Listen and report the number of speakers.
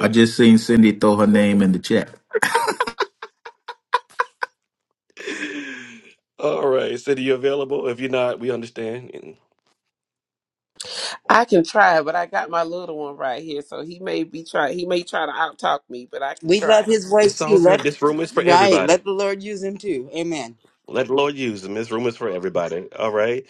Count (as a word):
four